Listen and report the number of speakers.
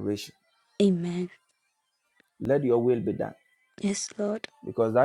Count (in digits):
2